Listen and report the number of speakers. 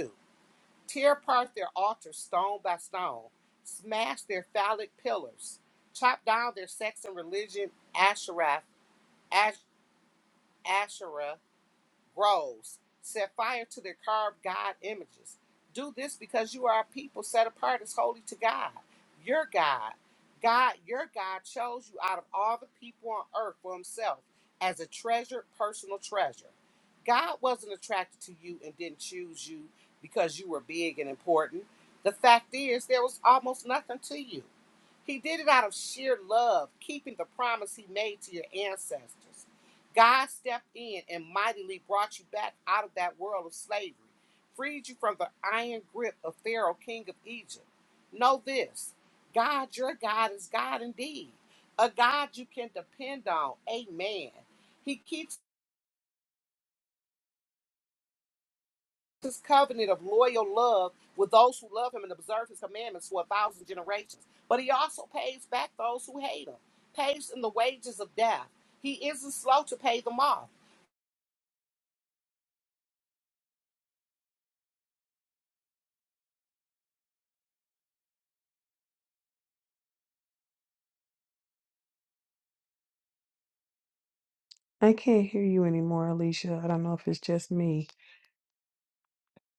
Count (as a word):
two